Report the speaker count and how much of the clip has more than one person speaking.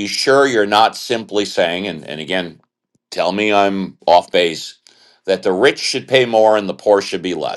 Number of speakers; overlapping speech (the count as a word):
one, no overlap